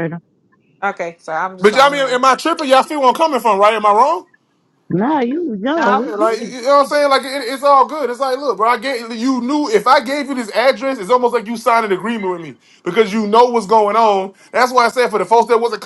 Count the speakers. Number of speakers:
three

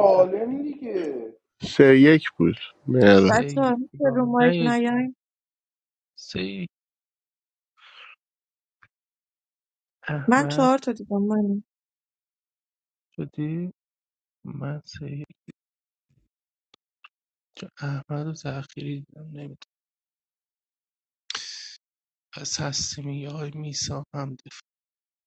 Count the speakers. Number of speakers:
four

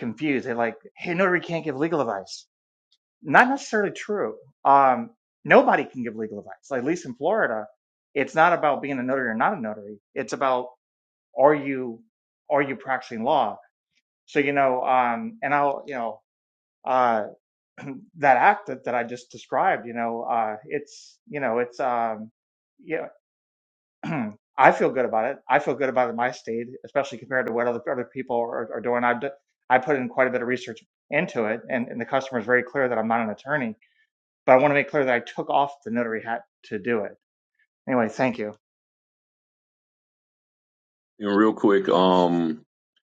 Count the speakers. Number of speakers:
two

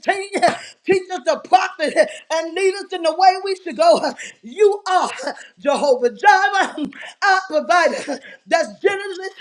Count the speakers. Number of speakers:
one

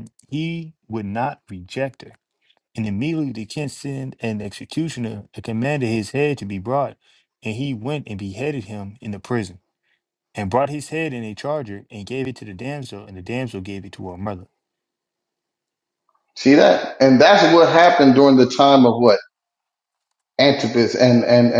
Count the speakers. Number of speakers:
two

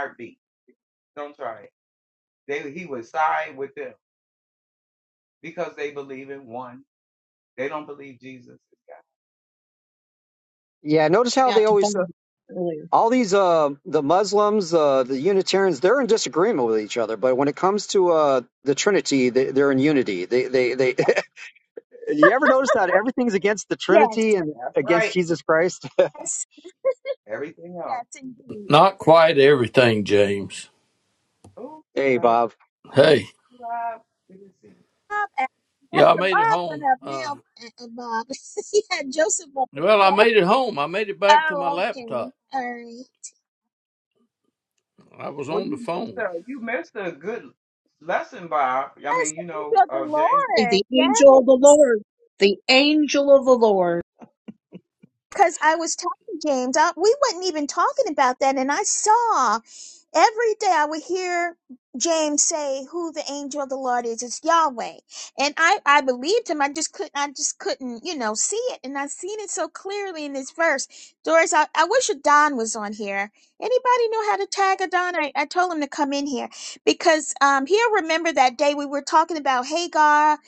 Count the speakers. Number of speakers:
five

